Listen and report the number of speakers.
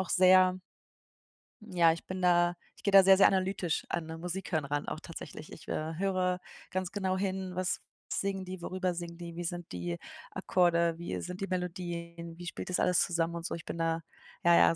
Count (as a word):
one